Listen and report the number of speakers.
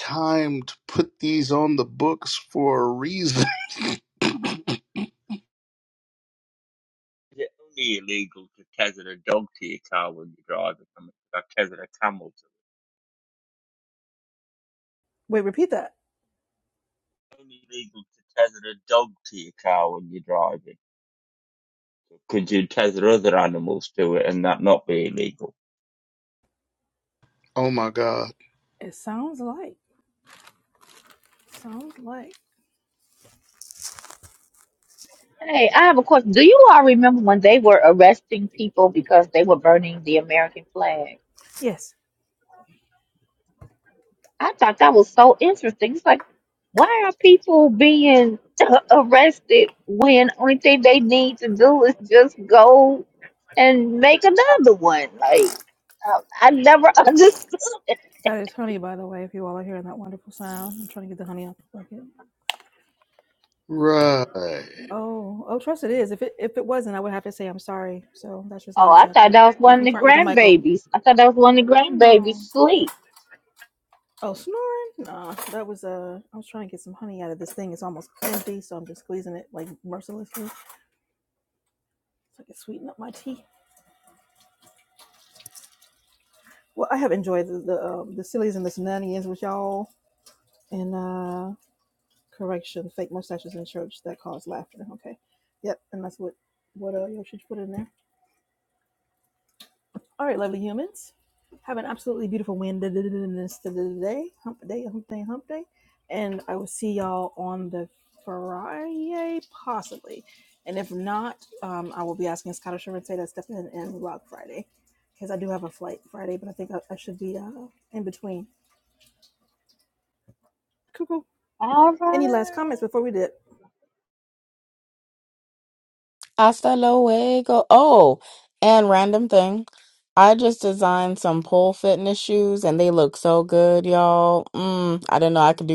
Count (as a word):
five